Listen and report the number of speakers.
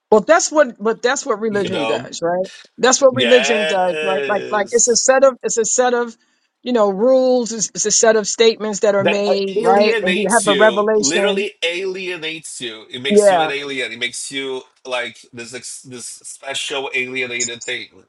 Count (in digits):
2